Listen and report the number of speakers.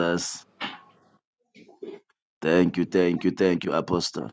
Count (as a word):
one